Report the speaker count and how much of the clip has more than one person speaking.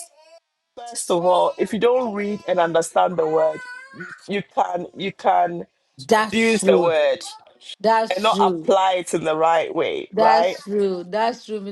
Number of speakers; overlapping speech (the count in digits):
2, about 16%